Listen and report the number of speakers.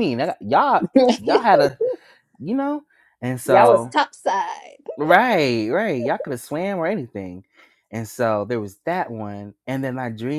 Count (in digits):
2